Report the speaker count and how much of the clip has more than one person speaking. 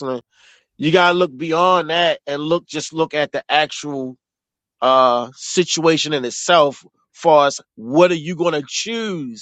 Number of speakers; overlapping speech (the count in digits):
1, no overlap